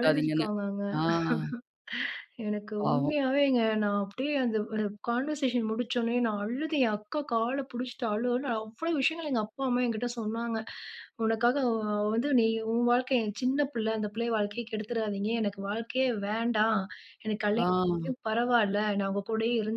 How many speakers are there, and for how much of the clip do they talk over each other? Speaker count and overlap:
2, about 5%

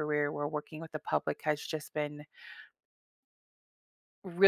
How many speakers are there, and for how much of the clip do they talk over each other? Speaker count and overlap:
1, no overlap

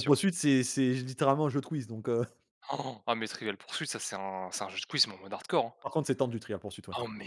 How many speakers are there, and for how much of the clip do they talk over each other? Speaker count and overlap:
2, about 2%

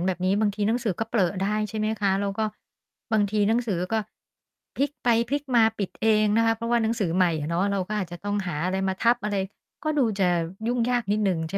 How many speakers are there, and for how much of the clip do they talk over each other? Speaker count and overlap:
1, no overlap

